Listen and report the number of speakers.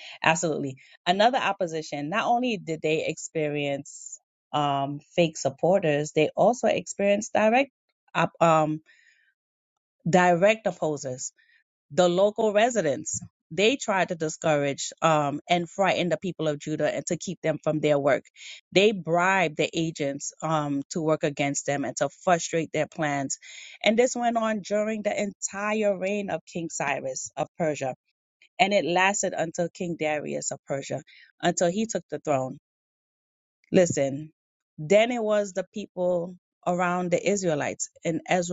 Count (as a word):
one